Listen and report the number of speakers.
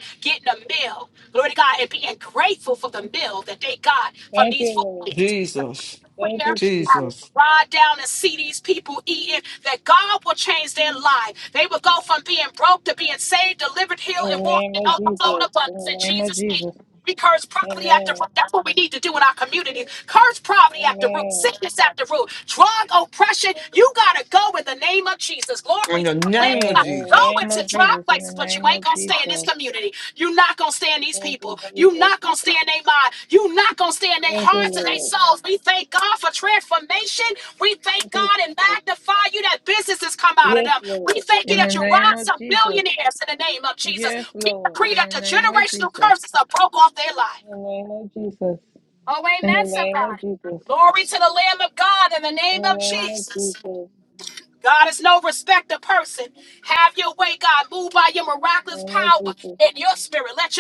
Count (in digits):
3